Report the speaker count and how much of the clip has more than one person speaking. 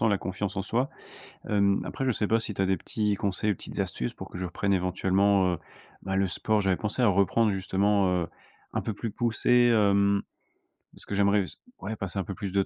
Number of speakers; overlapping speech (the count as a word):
one, no overlap